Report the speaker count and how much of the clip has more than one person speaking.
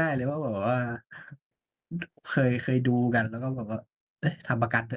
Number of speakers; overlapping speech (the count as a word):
one, no overlap